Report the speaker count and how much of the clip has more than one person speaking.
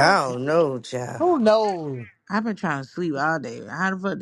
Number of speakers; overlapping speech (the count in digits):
3, about 5%